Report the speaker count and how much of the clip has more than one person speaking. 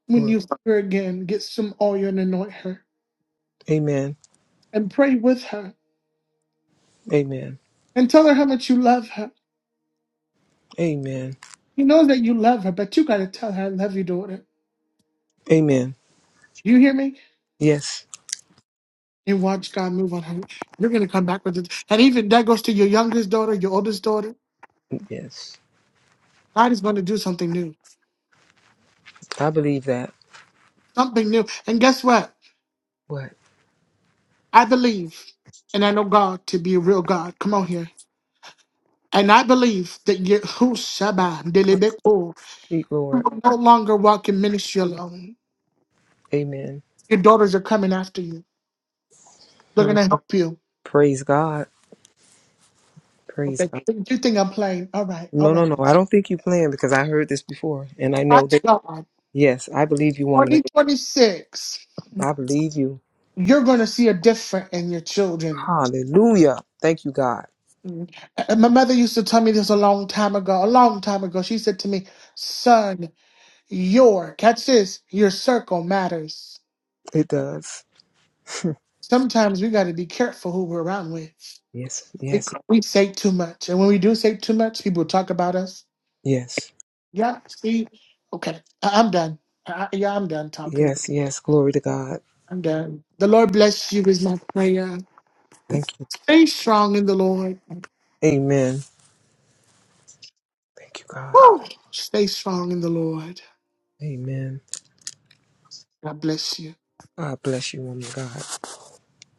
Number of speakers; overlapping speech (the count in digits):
2, about 2%